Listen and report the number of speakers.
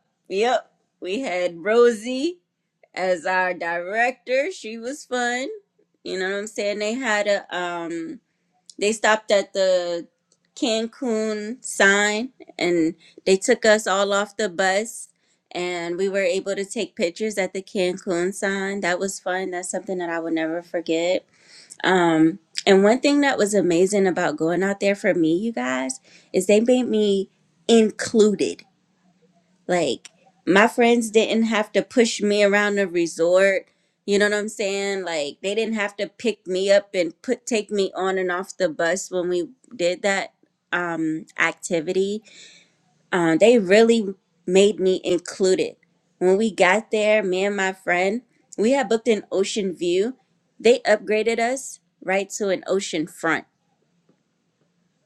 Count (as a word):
one